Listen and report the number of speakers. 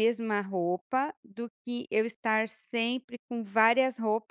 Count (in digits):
1